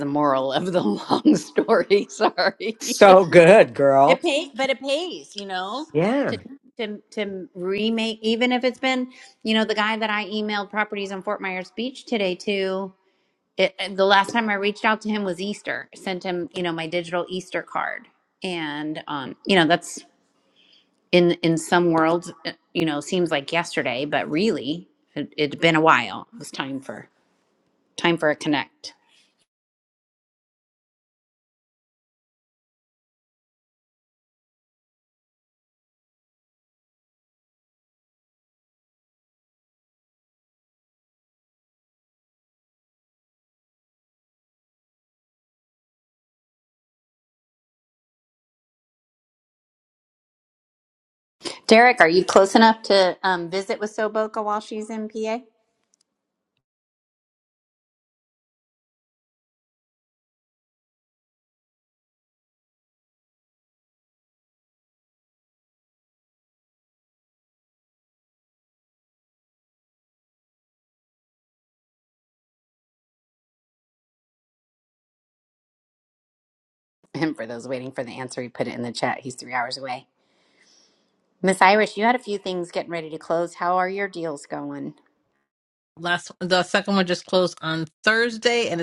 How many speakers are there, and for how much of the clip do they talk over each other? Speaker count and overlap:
three, under 1%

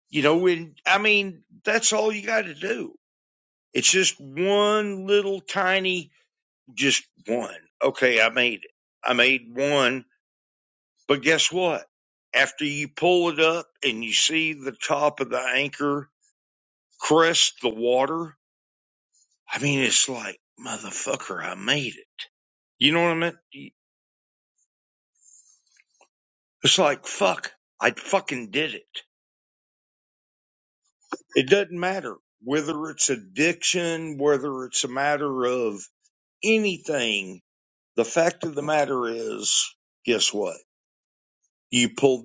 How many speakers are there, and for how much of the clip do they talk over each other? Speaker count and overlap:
one, no overlap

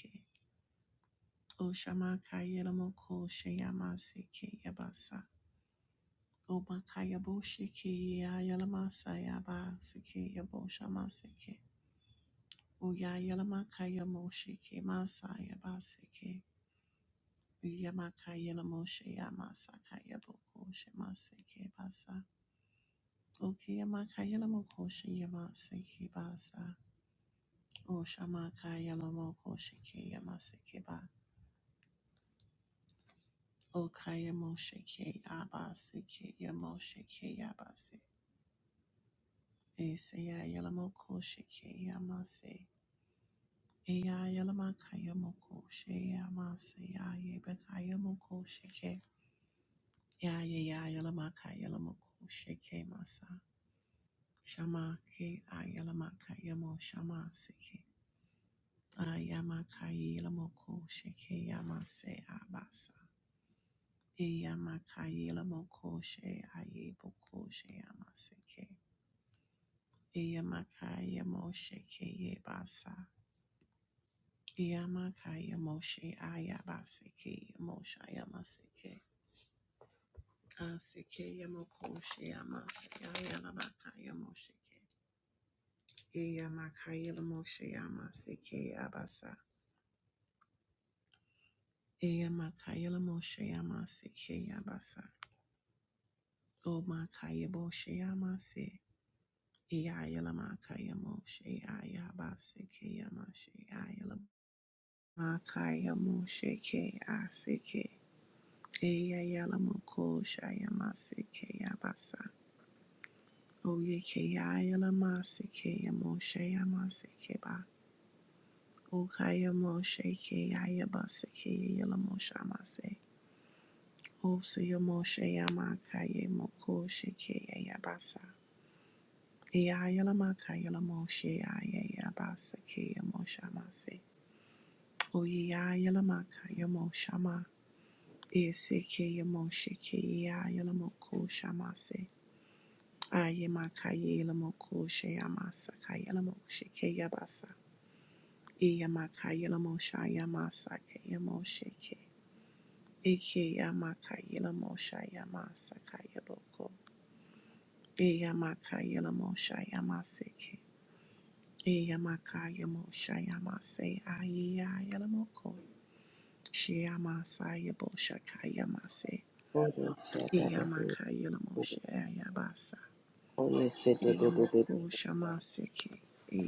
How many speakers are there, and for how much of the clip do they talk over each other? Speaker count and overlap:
two, under 1%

